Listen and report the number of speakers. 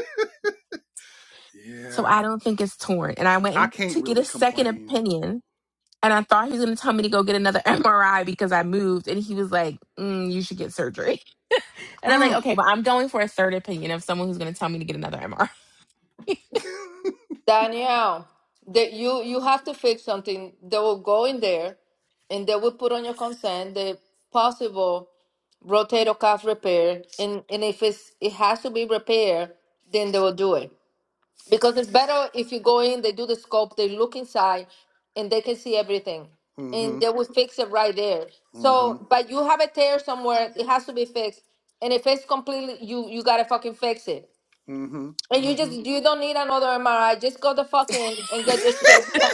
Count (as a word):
three